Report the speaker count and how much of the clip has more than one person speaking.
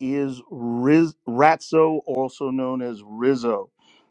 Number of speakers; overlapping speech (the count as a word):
one, no overlap